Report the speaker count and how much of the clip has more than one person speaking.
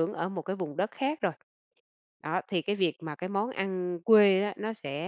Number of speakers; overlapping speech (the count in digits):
1, no overlap